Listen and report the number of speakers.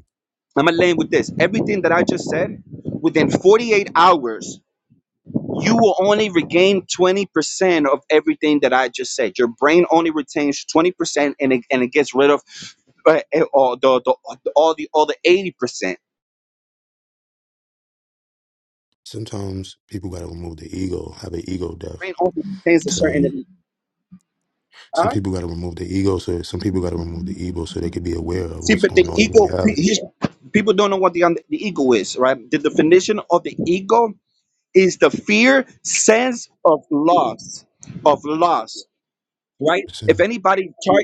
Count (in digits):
2